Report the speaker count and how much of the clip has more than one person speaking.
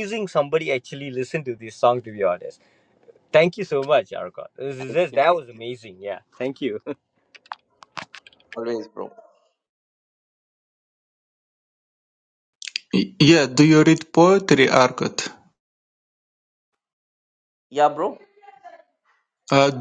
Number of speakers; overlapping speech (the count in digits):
3, about 2%